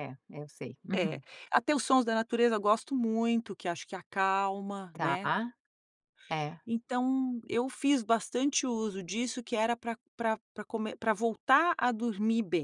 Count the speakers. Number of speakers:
two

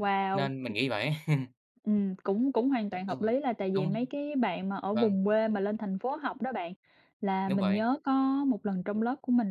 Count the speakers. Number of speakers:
two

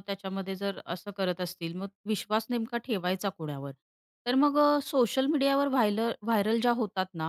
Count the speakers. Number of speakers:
one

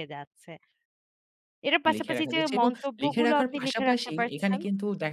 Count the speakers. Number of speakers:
two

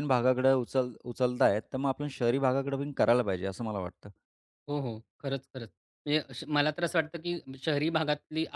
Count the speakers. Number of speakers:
two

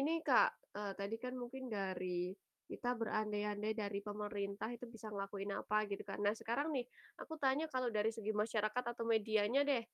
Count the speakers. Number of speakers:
one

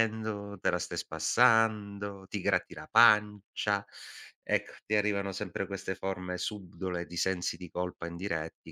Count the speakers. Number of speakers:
one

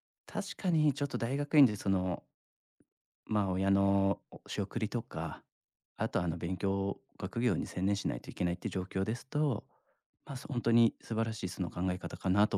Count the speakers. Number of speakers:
one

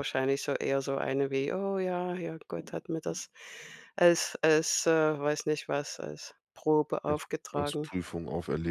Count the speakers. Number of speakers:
two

